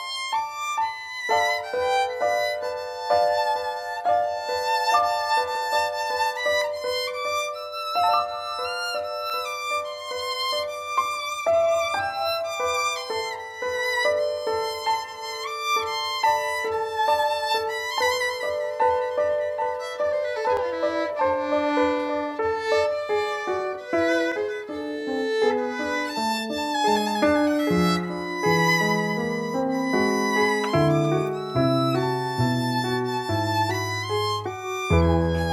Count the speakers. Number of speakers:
0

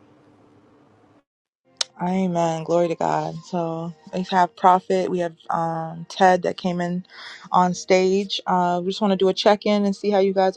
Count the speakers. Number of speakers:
1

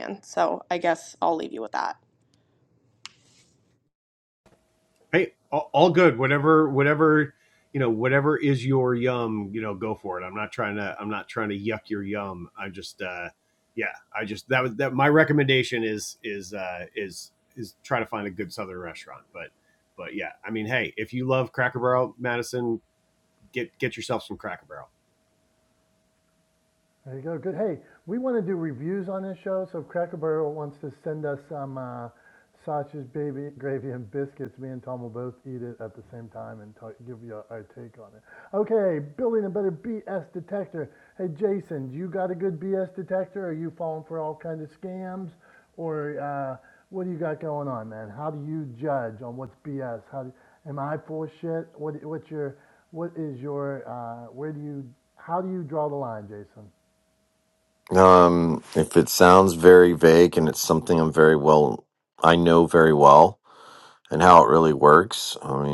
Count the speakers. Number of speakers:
4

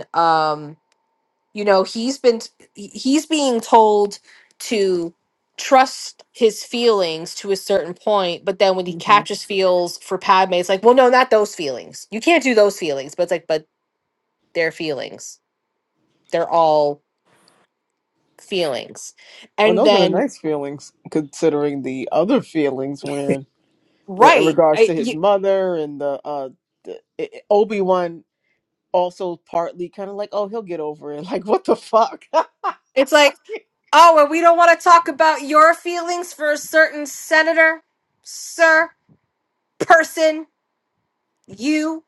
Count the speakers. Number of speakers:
2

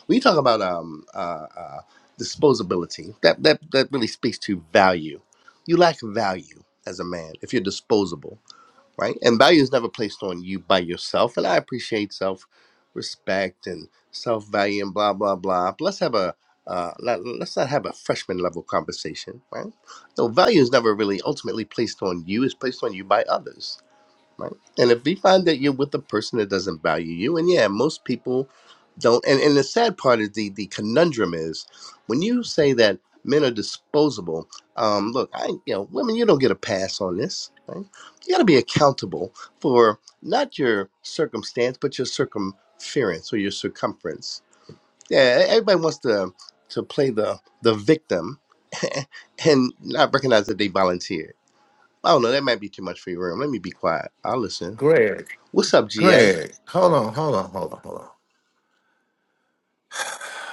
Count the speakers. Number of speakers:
2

